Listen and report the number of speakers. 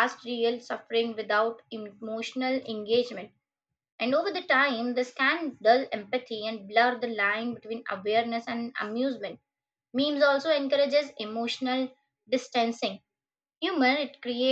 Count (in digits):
1